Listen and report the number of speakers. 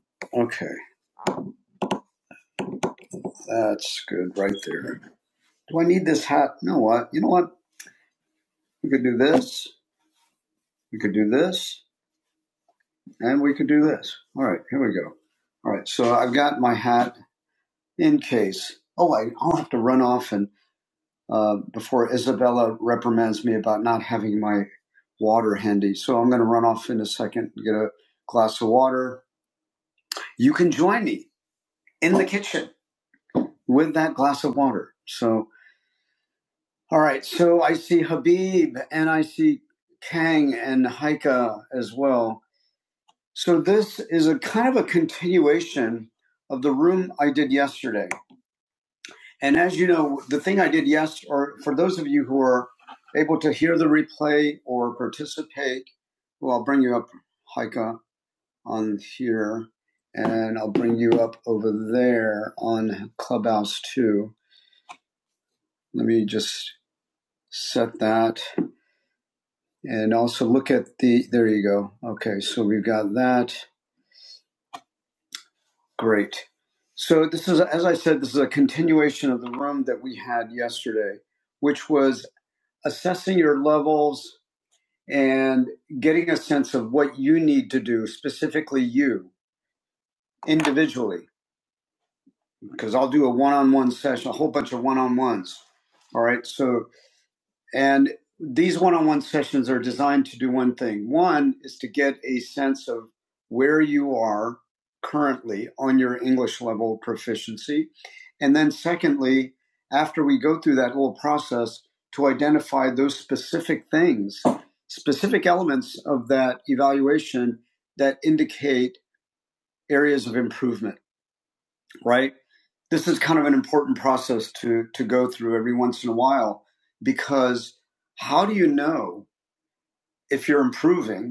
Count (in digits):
1